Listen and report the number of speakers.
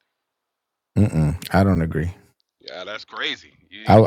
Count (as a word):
two